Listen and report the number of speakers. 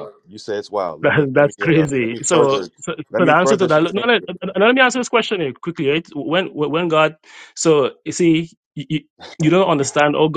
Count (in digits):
2